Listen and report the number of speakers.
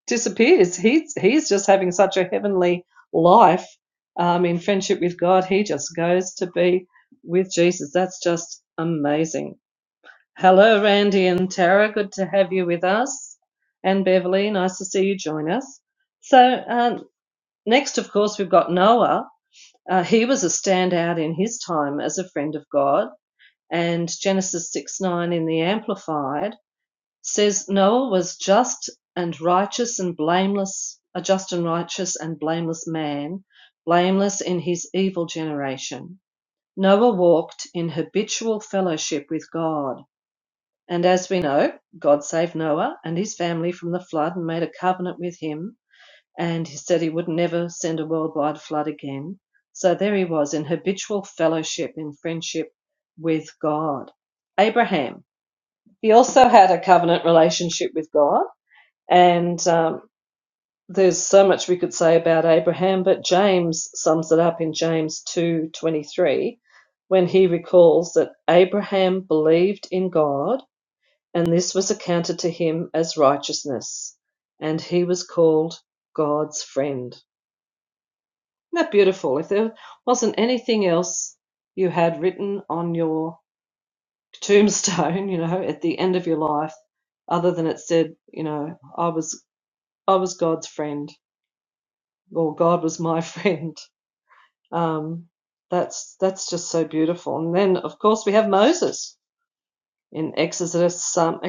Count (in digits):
1